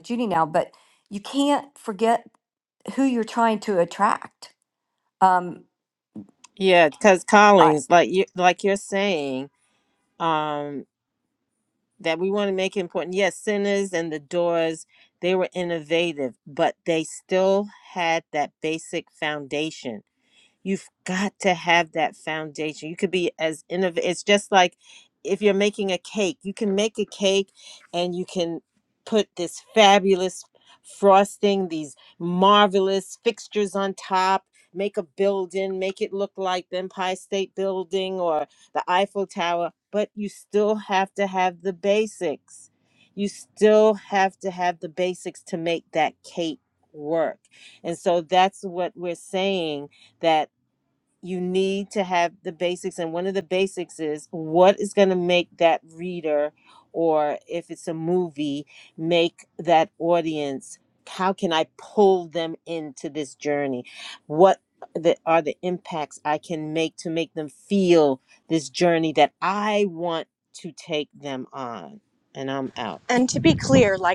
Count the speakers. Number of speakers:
3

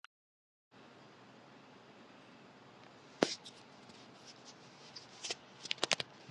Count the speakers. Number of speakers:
0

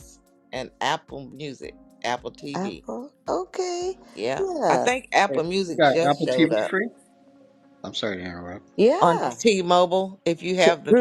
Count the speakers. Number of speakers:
3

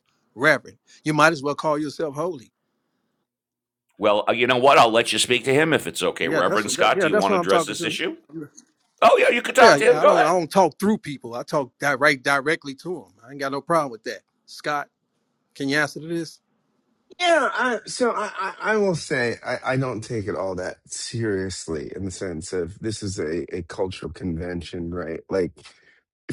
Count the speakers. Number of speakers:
3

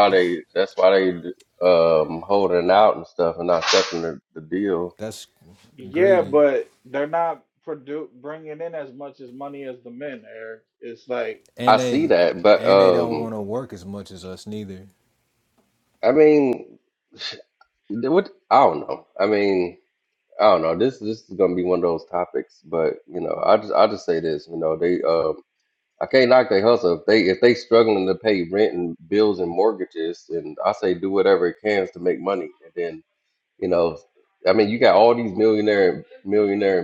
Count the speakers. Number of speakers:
3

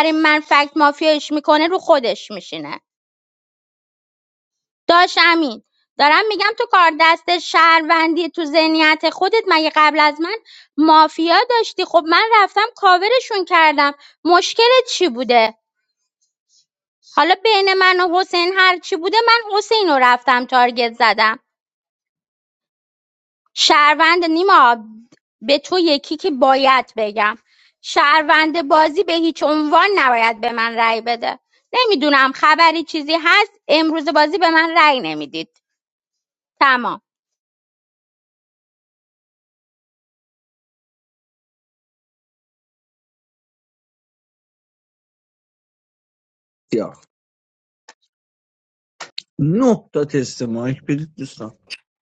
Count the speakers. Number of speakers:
2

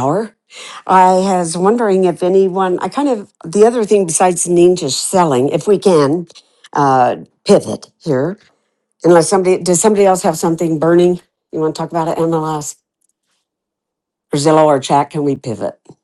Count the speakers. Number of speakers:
1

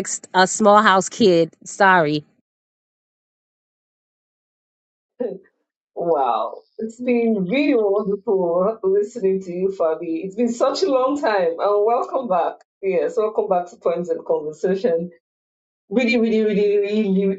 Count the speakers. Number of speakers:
2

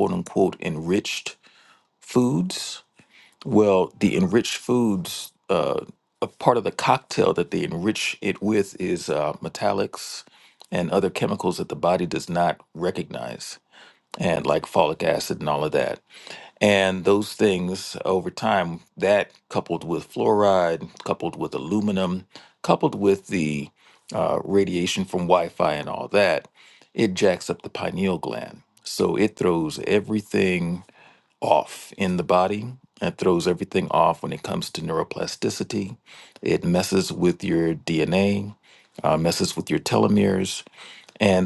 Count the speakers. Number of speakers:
1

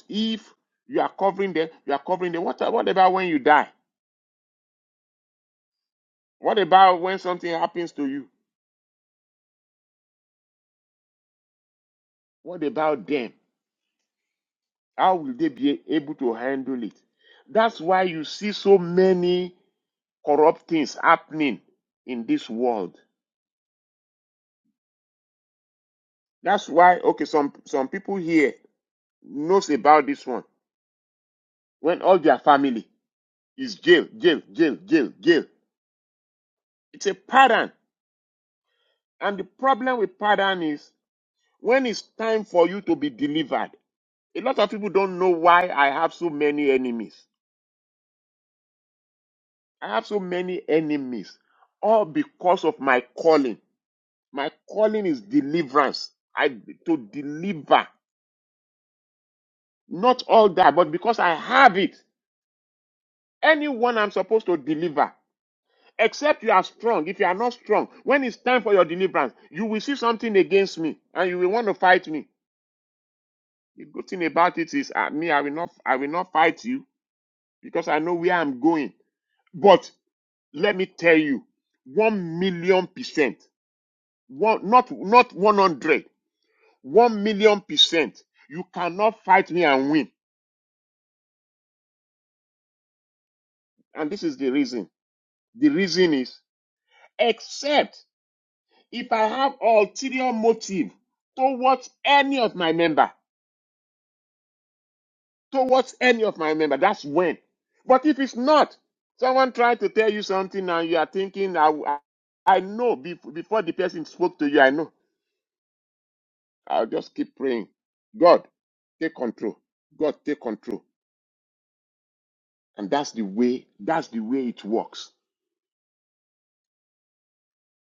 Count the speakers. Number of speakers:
1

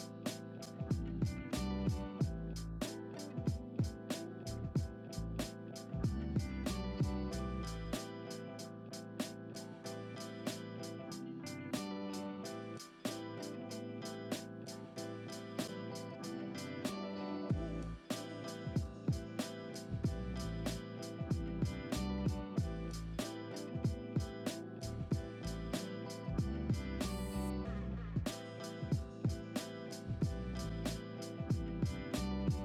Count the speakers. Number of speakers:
0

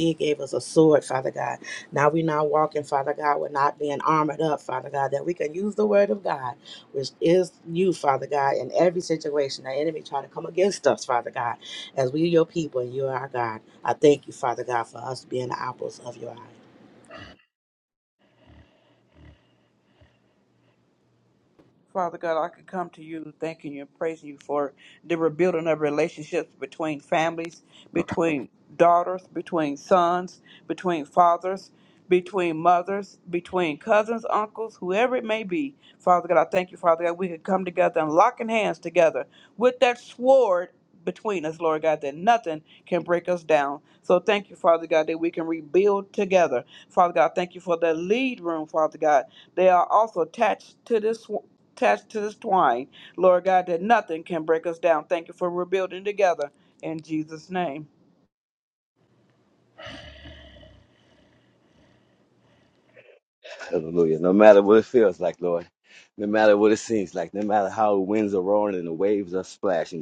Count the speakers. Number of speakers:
3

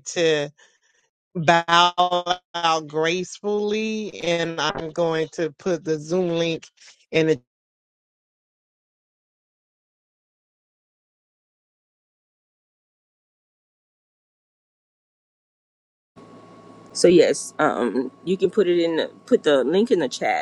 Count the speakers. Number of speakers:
2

